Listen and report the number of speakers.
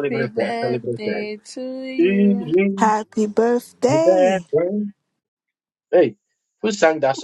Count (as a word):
three